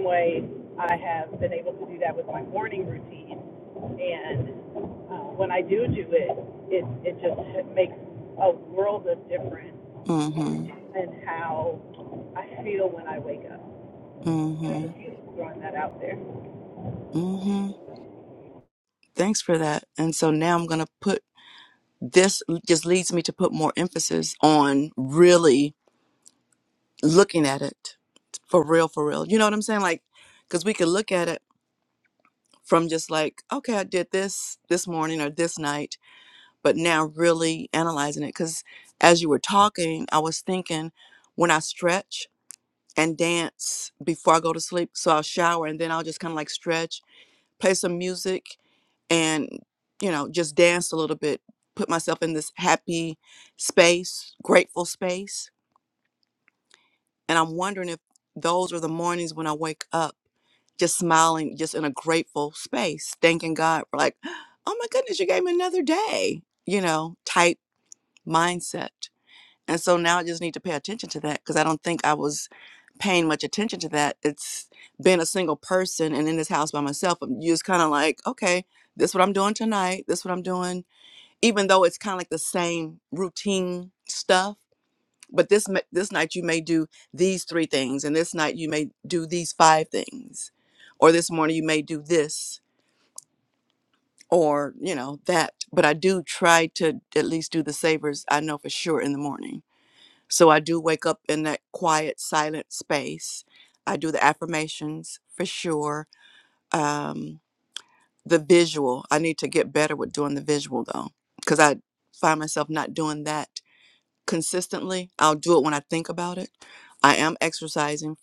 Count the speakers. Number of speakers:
2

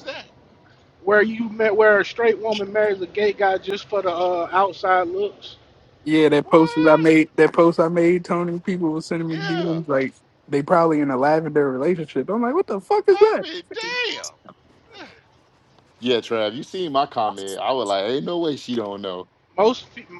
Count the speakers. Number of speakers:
4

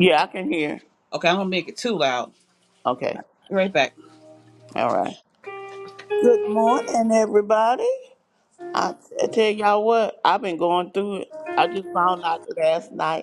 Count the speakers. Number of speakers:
2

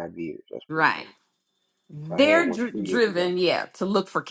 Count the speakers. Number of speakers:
2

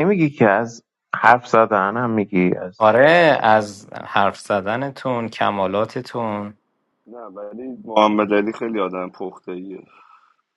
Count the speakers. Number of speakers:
3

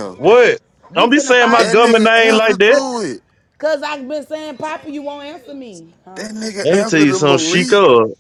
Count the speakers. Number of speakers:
3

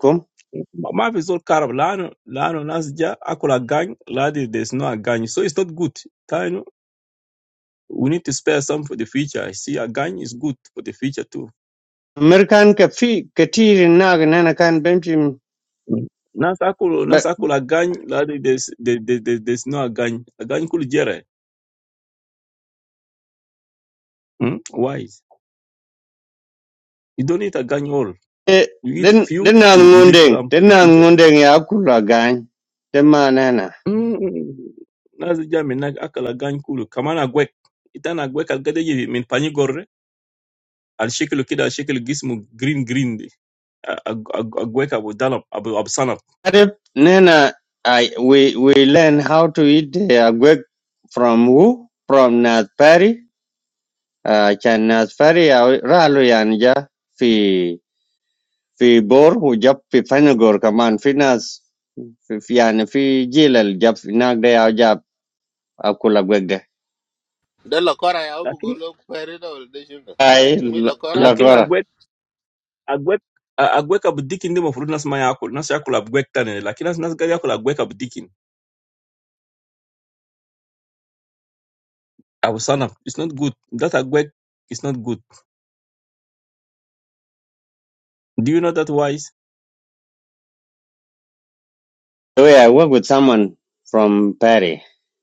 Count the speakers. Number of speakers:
3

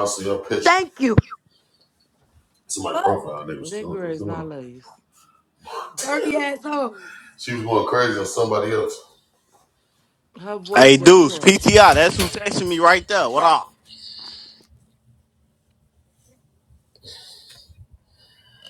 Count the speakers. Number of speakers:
4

